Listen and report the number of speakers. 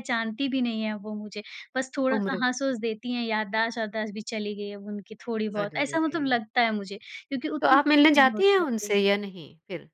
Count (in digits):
2